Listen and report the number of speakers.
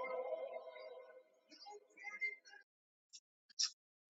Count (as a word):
zero